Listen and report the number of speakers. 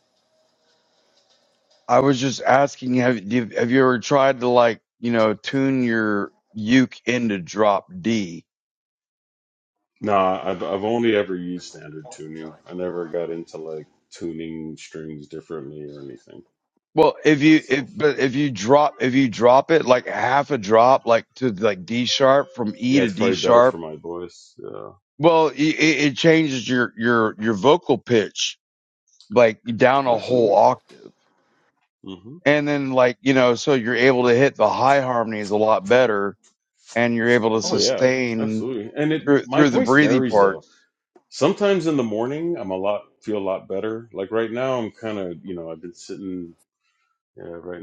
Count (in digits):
2